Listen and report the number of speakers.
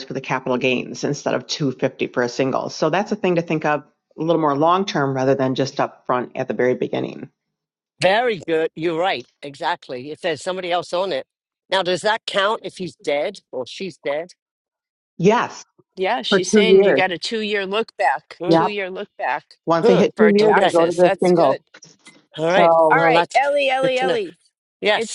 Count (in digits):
3